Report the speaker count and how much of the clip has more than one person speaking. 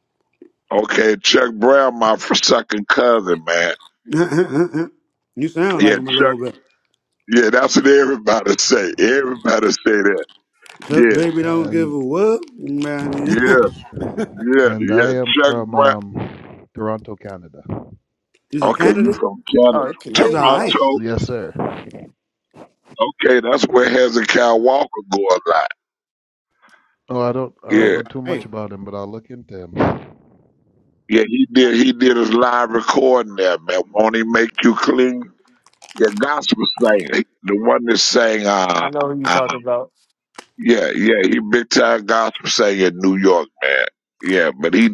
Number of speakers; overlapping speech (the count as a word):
four, about 13%